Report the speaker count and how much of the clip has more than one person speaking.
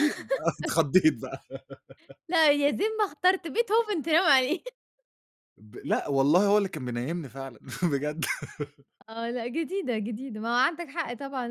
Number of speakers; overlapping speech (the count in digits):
2, no overlap